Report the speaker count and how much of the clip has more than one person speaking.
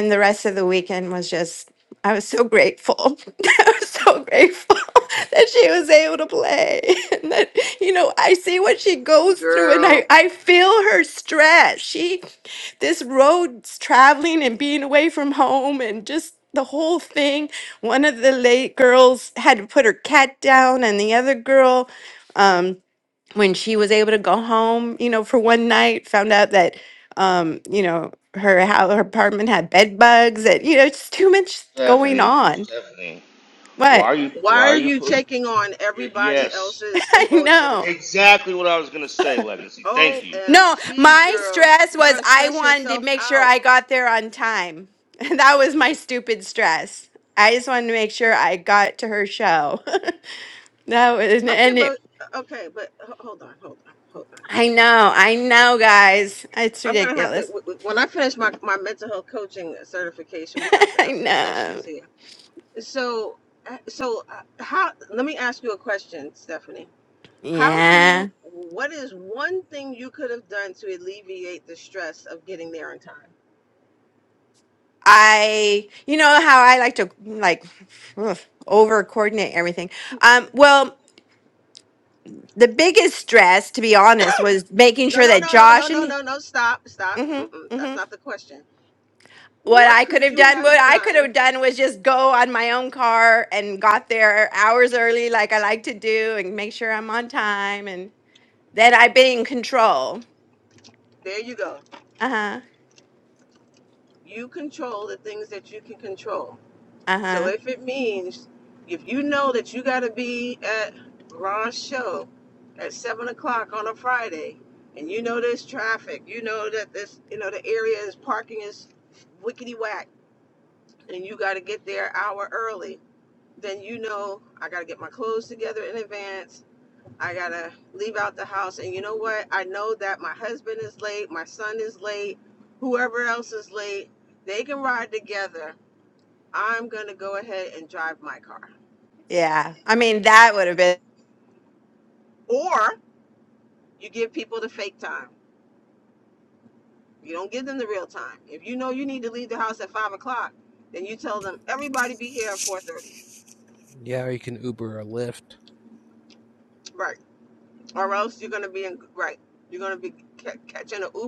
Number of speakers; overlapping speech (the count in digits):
4, about 9%